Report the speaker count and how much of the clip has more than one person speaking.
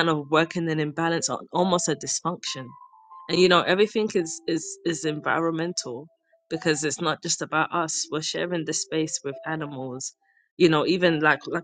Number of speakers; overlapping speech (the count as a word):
one, no overlap